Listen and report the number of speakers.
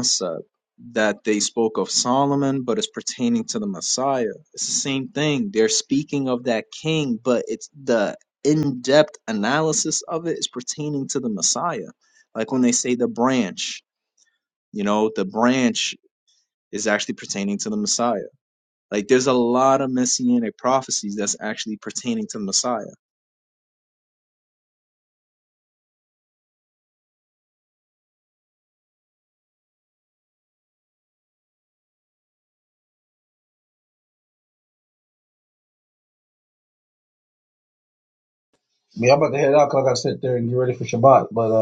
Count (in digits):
2